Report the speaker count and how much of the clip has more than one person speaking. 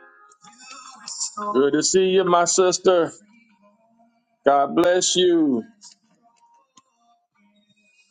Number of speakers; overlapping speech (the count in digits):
1, no overlap